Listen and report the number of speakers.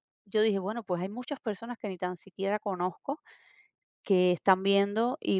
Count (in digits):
1